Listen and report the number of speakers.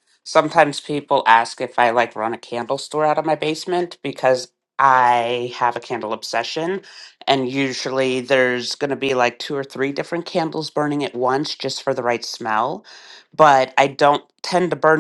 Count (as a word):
one